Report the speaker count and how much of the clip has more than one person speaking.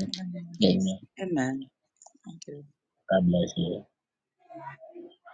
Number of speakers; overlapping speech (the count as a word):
two, about 5%